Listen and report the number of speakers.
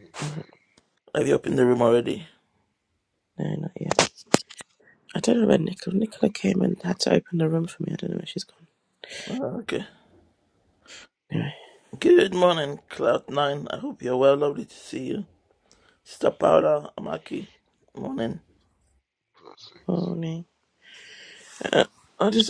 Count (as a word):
three